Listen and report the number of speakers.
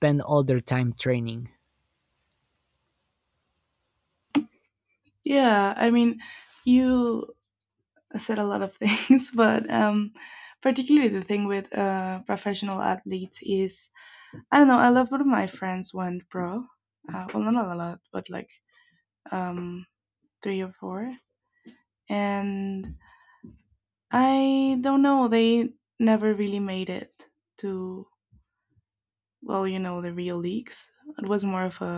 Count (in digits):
2